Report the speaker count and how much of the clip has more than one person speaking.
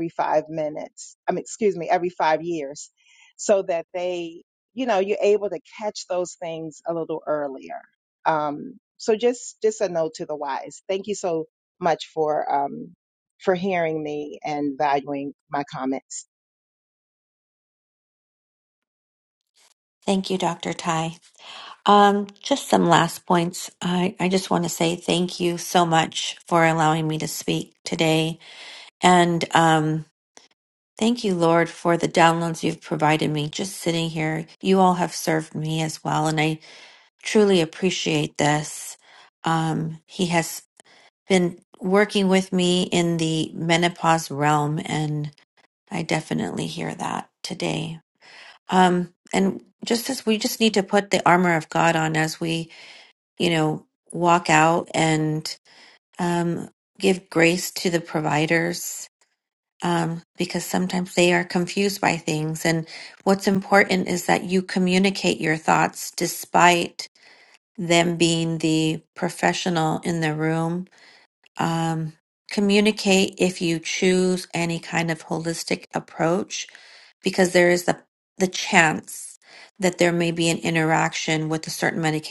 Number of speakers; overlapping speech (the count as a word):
two, no overlap